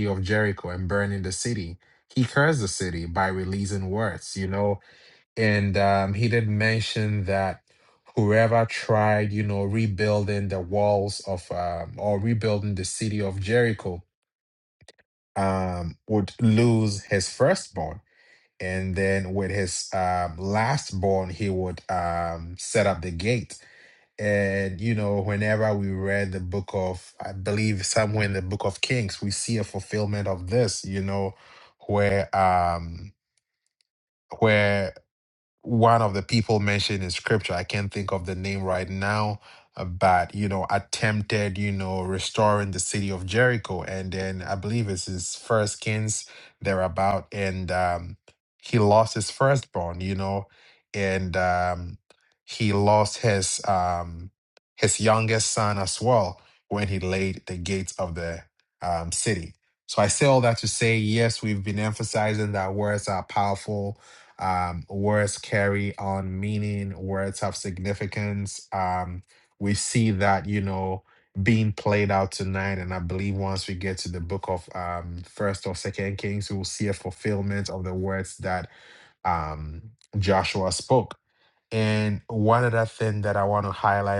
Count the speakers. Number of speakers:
1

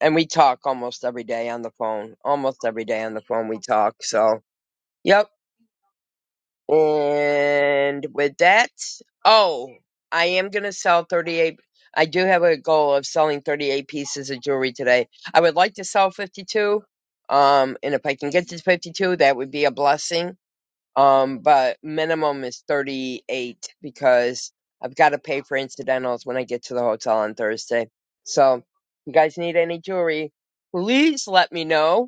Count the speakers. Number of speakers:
1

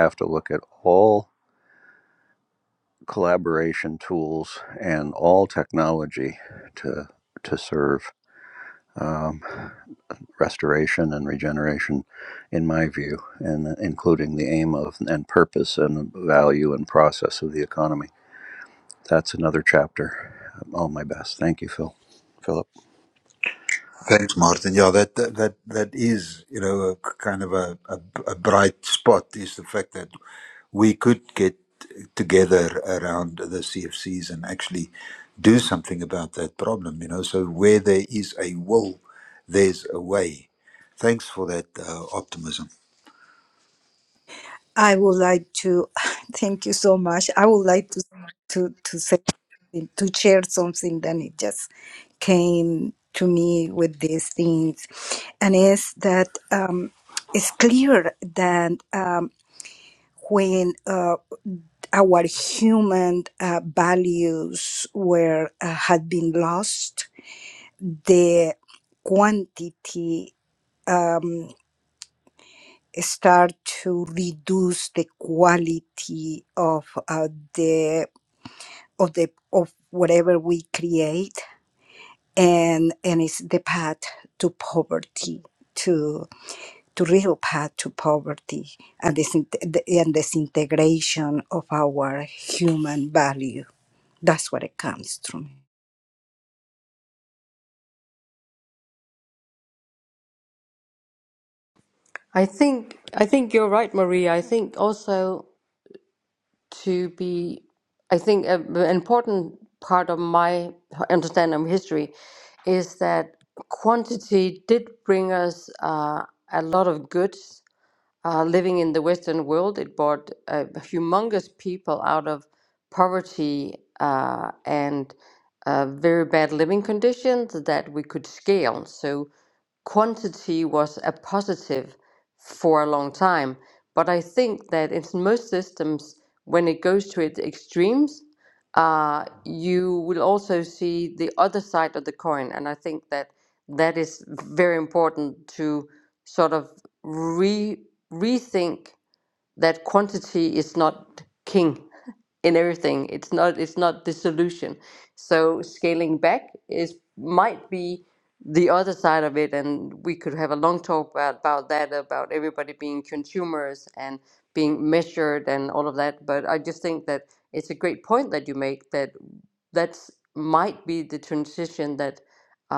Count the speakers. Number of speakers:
4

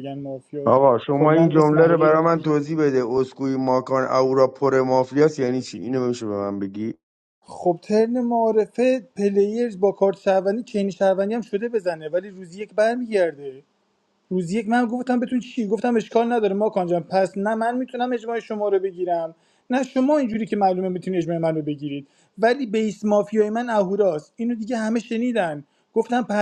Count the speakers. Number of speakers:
2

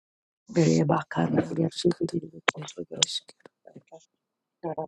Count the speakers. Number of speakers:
2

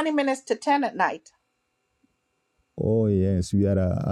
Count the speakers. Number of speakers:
2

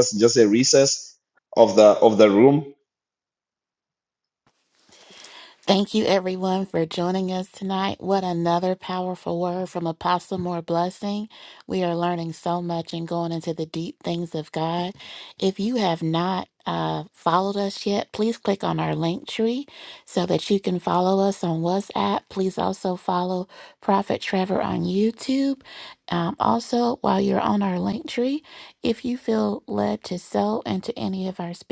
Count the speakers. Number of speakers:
2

